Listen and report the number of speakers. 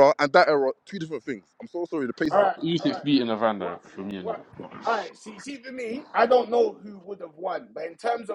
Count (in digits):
3